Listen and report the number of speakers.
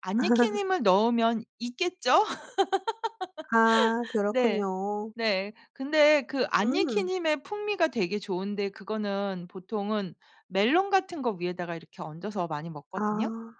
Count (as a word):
two